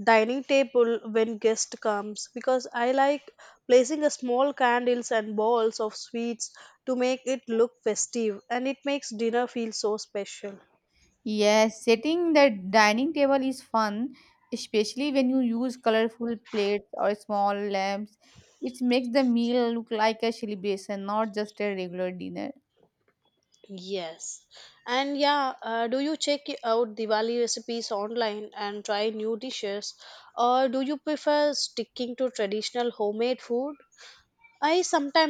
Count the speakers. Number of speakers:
two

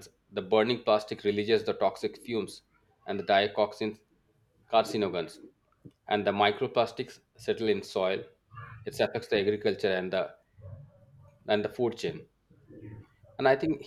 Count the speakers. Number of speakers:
one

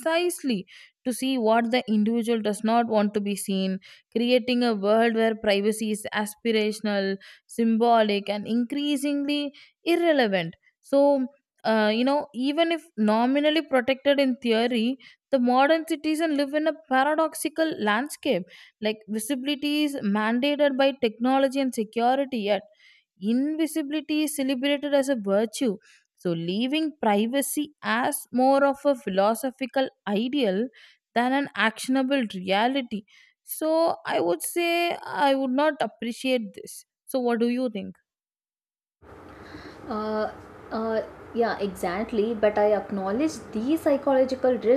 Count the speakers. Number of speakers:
two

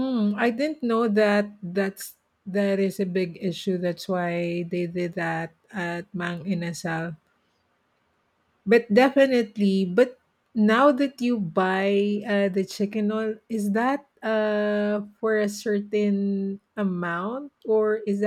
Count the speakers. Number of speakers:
one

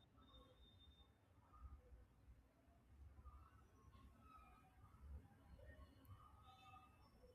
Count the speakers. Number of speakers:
zero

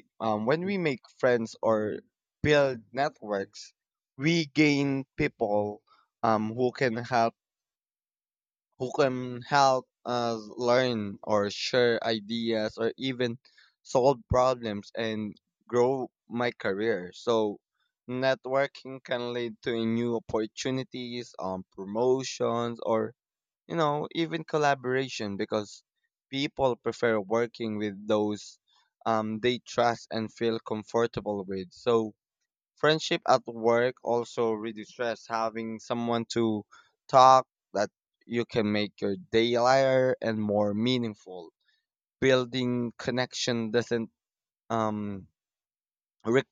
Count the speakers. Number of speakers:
one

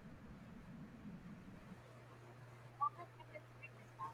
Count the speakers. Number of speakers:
zero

